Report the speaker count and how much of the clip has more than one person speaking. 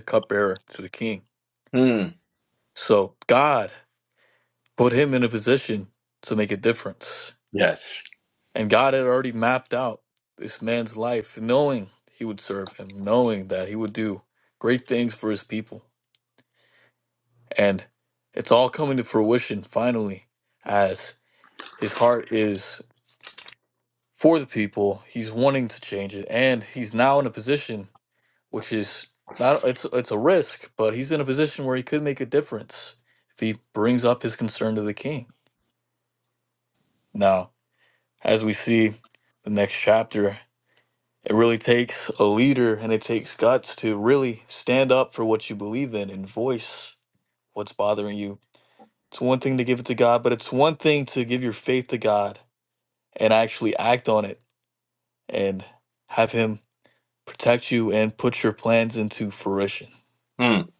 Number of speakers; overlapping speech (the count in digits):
2, no overlap